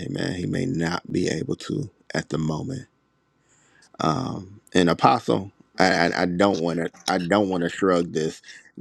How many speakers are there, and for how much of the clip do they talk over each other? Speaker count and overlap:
one, no overlap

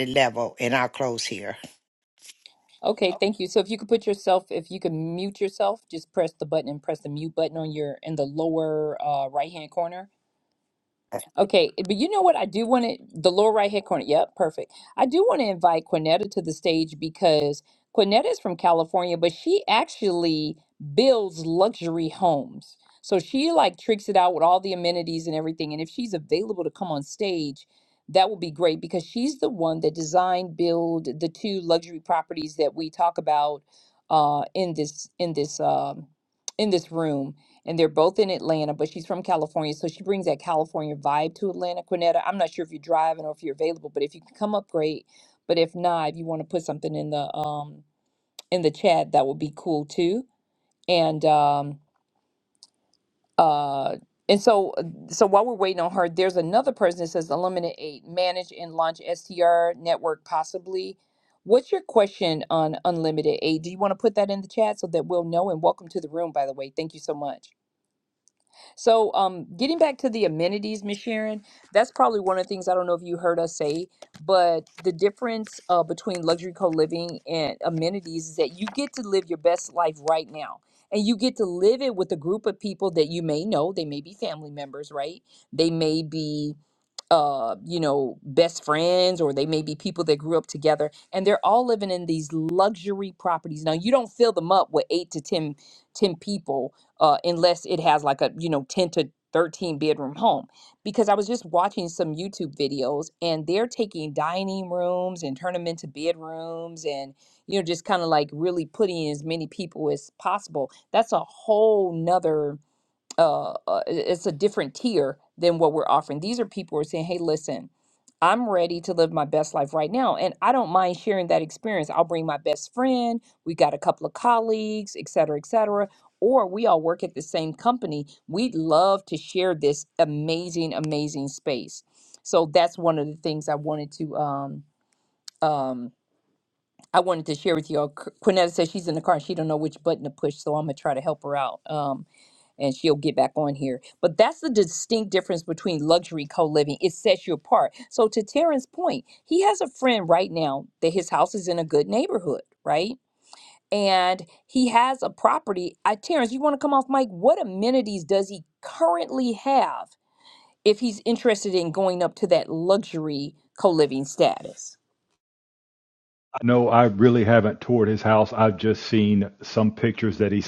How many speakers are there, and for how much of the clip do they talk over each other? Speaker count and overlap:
three, no overlap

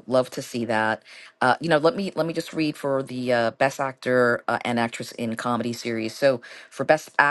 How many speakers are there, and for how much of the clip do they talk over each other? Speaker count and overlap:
one, no overlap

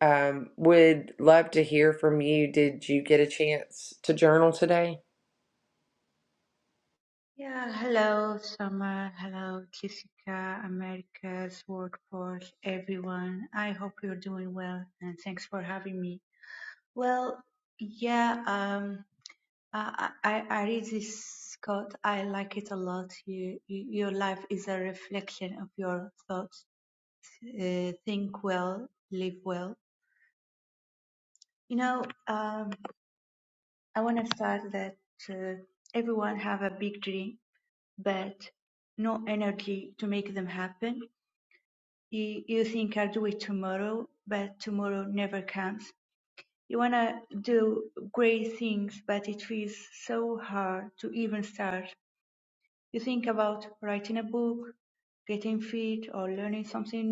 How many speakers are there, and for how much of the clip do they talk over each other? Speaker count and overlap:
two, no overlap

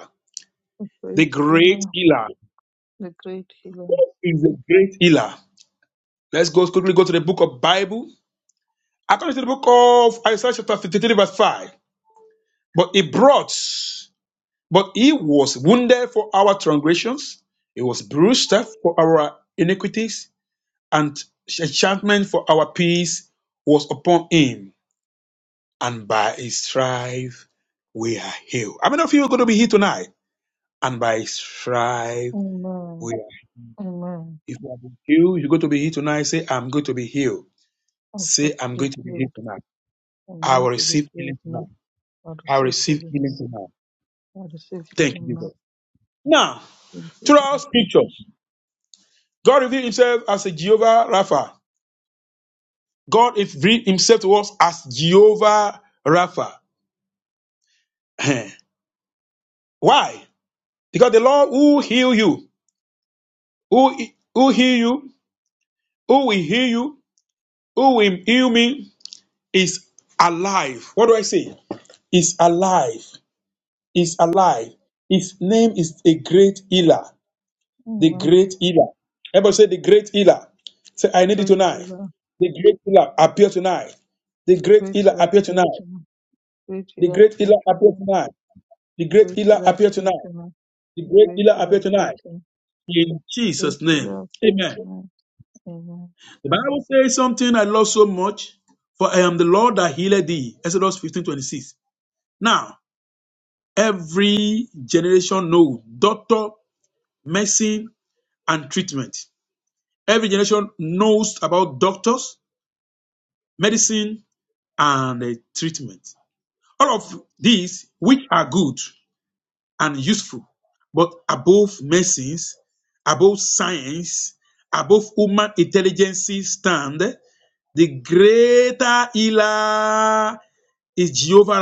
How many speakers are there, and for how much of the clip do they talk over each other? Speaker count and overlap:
two, about 8%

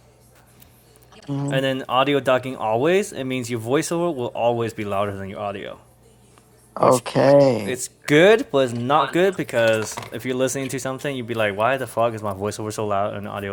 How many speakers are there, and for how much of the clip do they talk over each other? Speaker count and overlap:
two, about 3%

